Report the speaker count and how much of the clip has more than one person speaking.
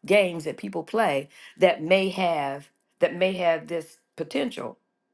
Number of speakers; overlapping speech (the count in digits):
1, no overlap